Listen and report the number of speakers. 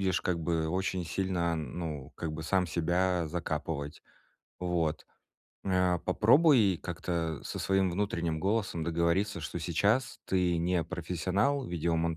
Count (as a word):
one